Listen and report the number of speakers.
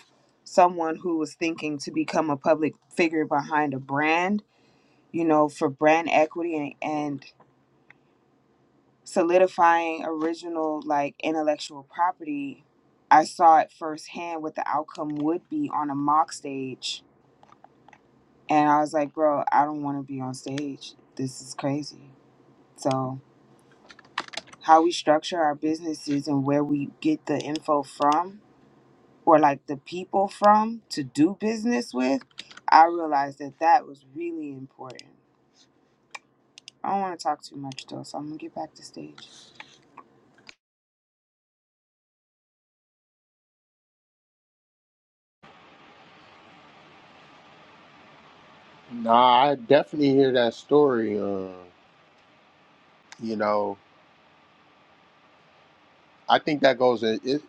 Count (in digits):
2